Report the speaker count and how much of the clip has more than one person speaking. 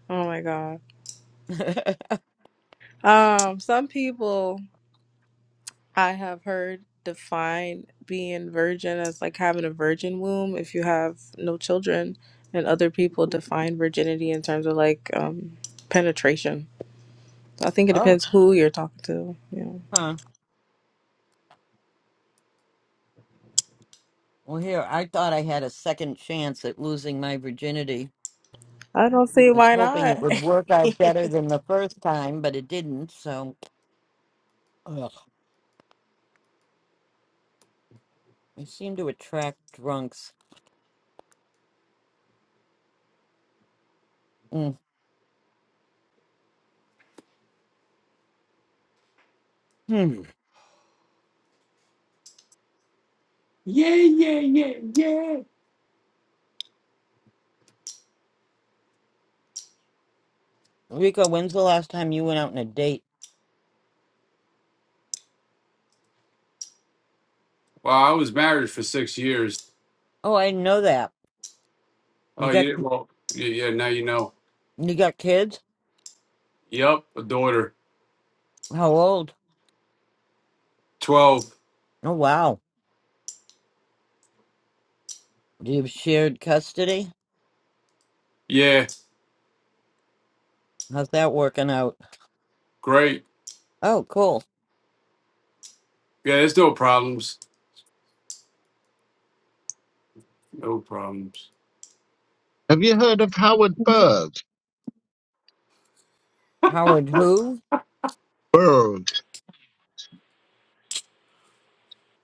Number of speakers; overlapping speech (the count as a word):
four, about 1%